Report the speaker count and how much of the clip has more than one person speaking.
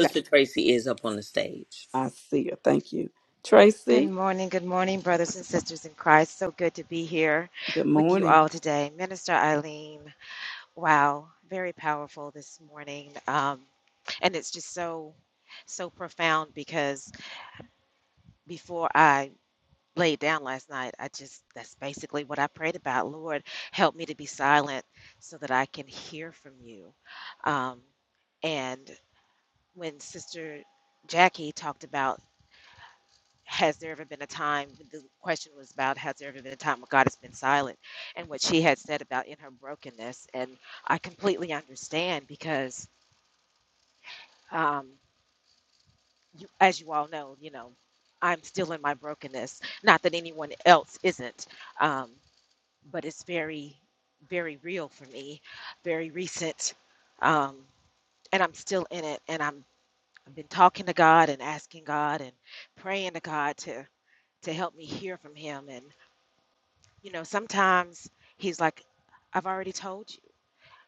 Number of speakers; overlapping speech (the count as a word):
three, about 1%